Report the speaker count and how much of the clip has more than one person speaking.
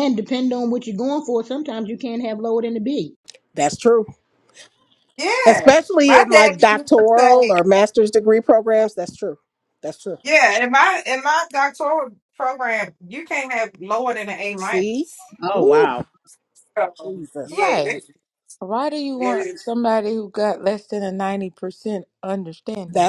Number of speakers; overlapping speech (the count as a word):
four, about 15%